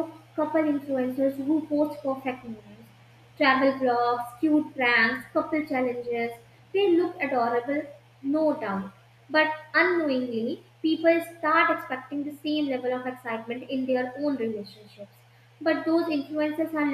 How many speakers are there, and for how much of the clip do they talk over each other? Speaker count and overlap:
one, no overlap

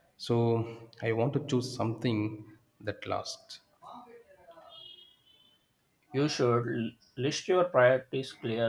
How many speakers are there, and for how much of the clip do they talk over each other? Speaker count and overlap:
two, no overlap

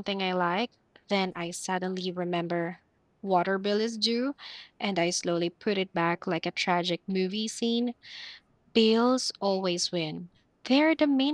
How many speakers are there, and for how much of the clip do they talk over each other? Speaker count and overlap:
one, no overlap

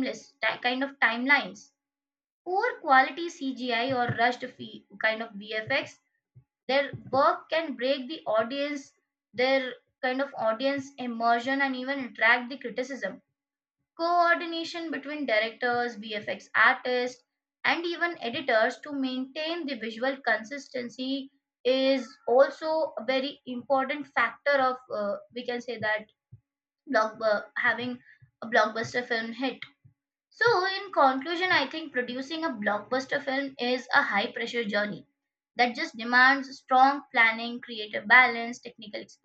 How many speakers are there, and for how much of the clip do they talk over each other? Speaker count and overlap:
one, no overlap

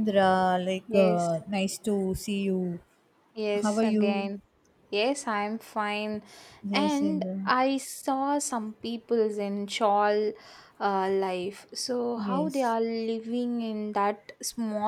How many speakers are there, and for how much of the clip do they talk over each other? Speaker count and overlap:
two, about 14%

